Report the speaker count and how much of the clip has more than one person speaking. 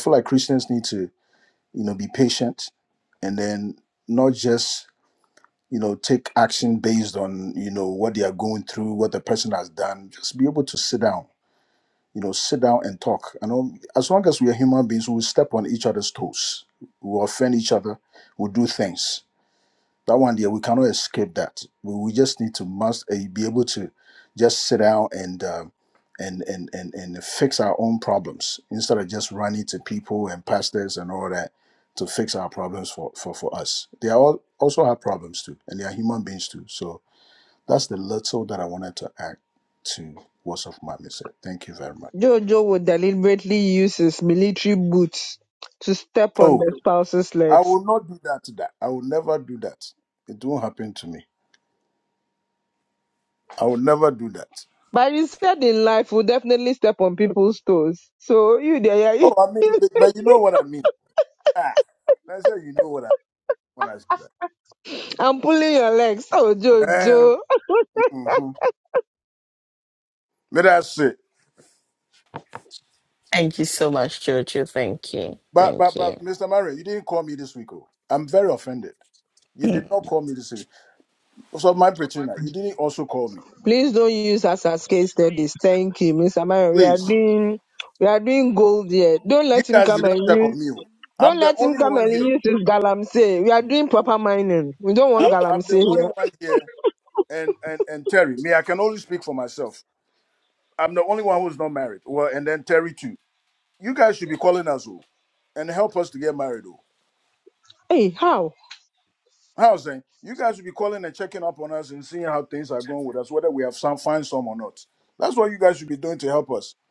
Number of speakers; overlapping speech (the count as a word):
three, about 4%